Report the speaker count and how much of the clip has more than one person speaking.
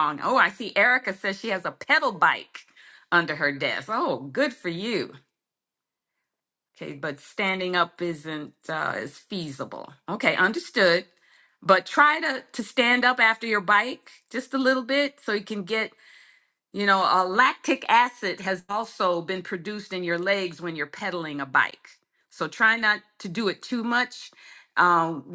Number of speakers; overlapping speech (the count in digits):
1, no overlap